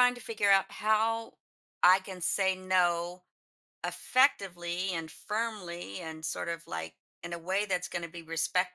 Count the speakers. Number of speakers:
1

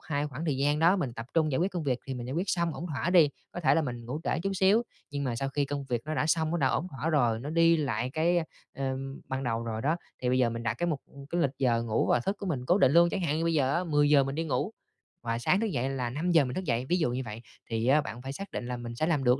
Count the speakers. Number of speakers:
1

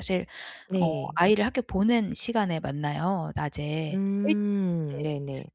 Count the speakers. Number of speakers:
2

